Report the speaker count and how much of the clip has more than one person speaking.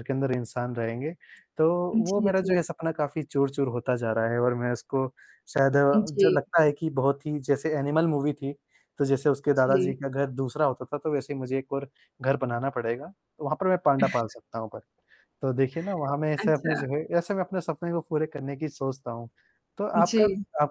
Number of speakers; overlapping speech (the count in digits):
2, about 10%